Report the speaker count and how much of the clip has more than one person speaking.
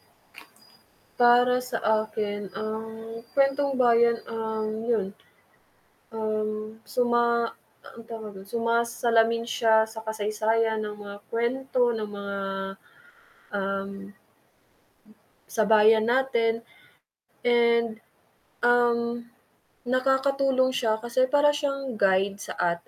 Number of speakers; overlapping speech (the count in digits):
1, no overlap